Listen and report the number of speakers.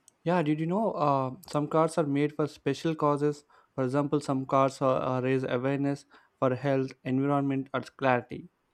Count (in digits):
1